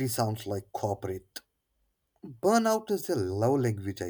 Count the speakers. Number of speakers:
one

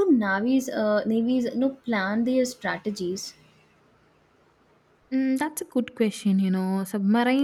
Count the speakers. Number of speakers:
two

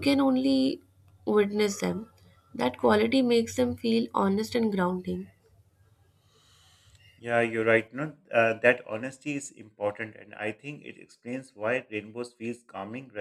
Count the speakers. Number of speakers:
two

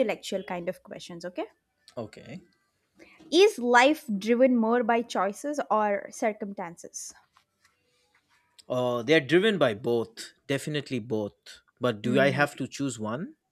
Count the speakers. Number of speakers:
two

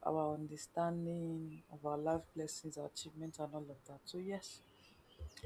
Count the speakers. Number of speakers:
one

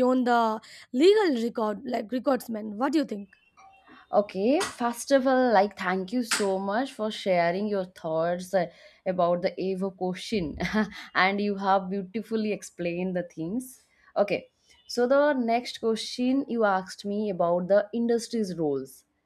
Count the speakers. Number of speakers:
two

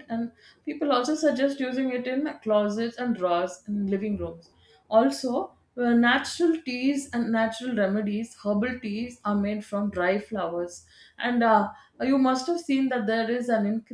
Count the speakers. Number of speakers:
one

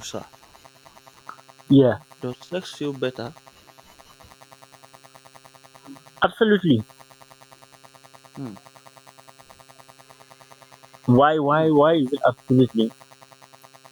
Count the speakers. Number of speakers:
two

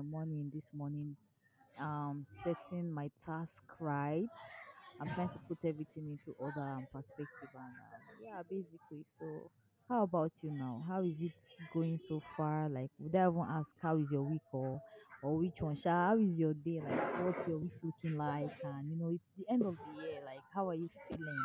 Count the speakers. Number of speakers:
one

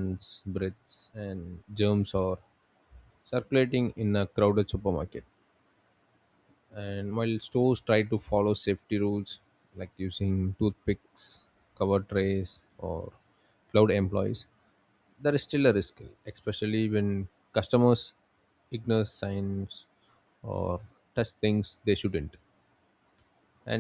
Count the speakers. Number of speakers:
one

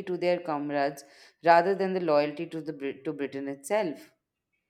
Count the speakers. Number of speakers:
one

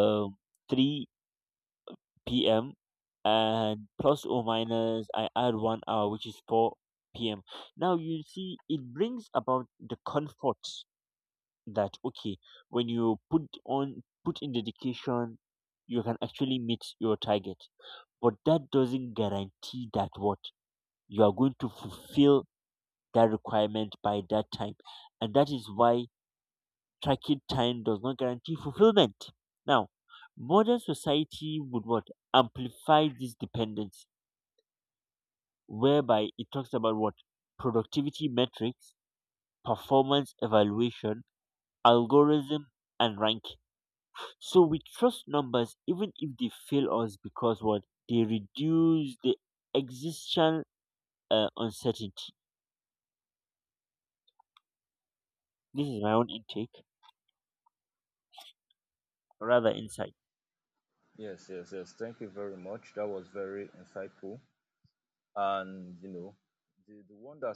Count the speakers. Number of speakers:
two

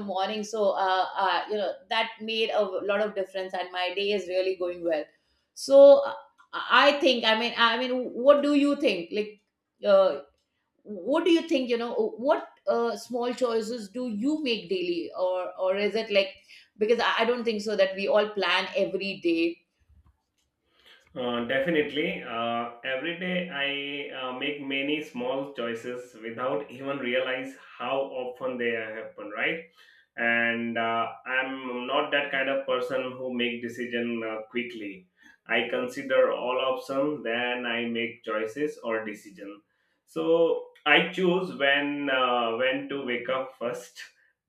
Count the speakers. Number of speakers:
two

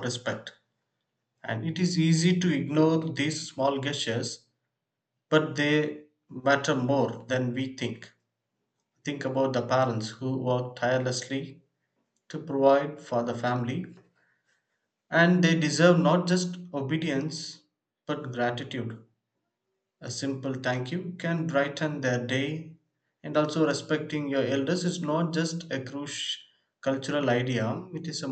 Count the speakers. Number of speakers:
one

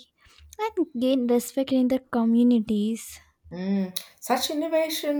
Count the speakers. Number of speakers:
two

